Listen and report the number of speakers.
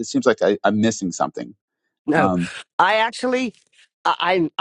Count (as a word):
two